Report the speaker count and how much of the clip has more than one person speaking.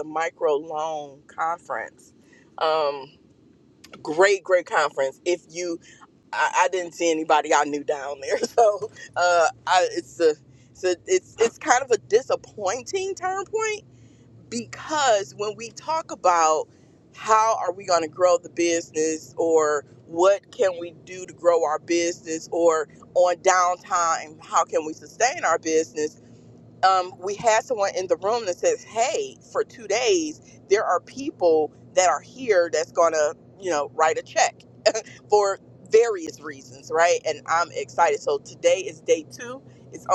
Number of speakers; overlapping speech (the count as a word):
one, no overlap